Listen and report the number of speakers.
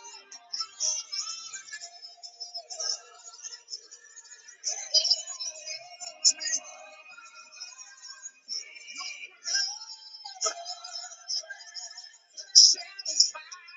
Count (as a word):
zero